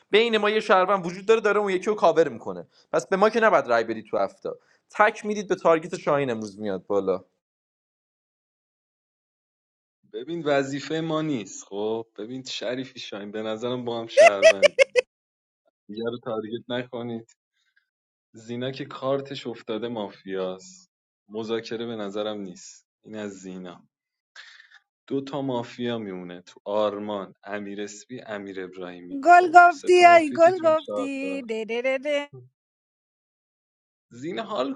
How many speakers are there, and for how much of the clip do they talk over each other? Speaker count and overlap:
three, about 7%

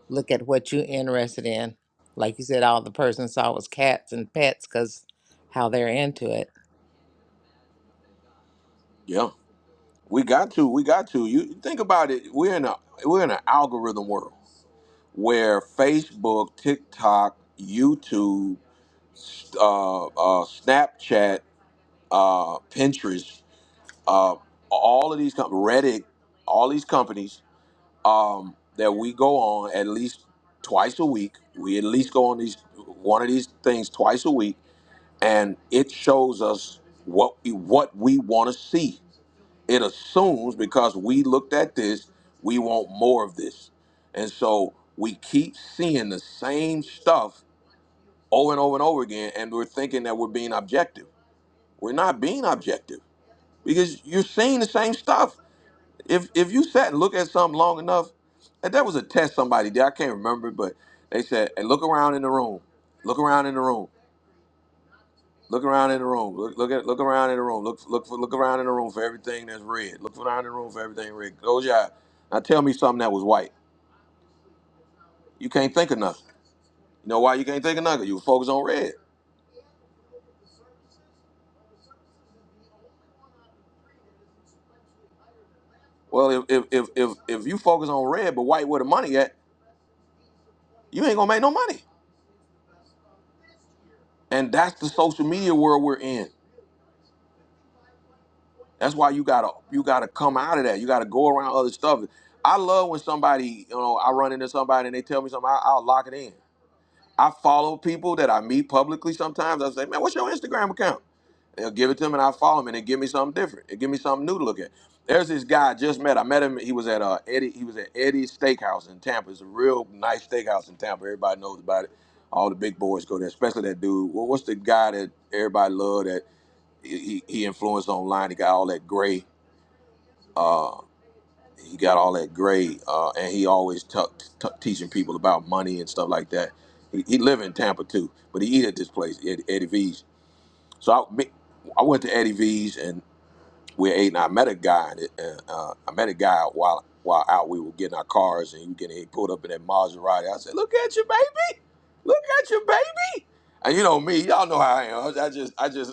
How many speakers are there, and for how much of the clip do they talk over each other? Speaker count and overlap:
two, no overlap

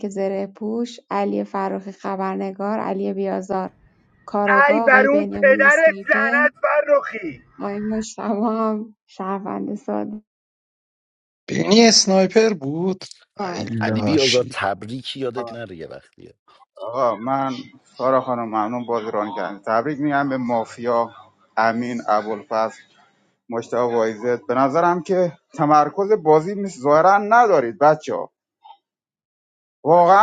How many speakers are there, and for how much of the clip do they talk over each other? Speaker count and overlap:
five, about 8%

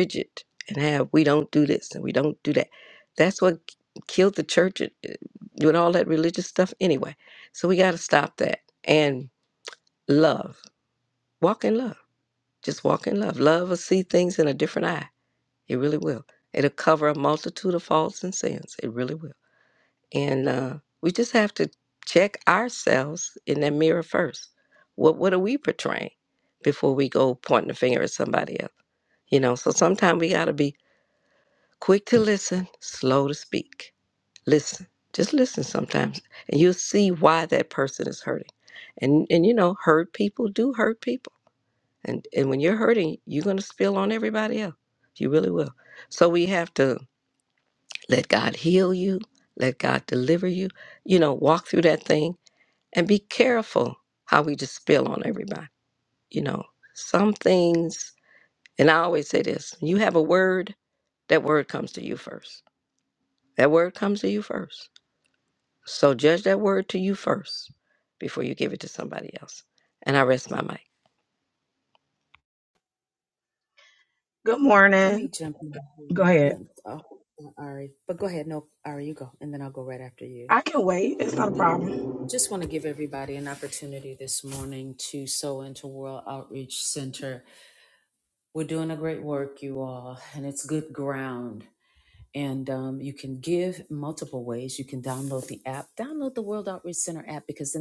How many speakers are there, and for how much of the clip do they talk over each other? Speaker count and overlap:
three, about 1%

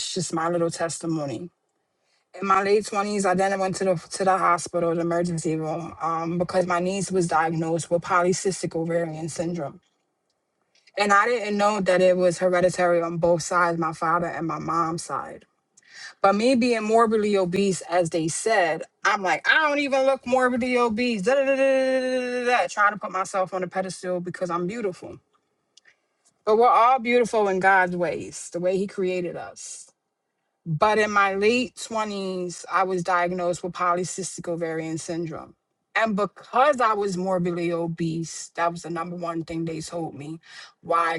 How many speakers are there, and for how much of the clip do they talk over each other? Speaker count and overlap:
one, no overlap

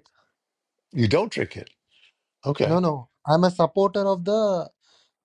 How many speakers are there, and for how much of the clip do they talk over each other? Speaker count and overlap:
two, about 2%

